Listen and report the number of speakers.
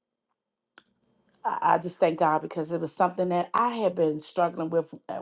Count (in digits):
1